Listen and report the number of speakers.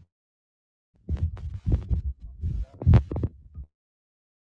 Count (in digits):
0